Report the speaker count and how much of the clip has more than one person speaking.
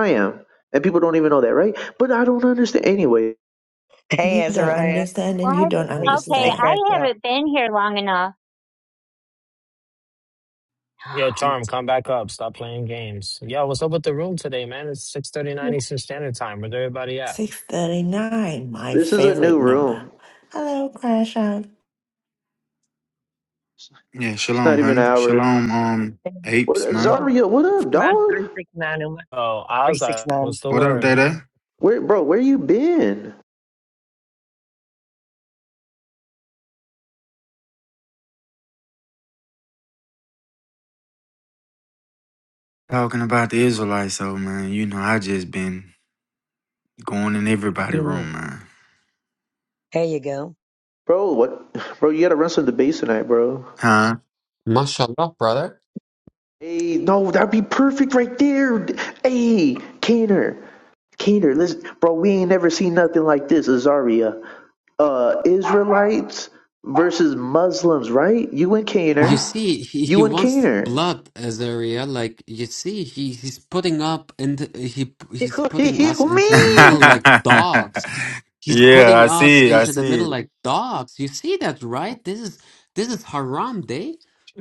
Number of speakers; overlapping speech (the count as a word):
seven, about 13%